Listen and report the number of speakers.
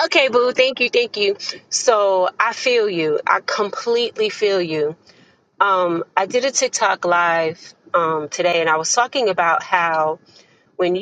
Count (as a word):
one